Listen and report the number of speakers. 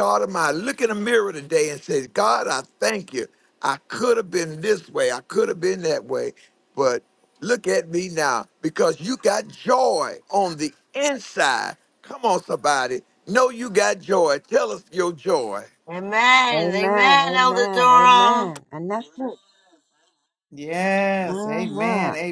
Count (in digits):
4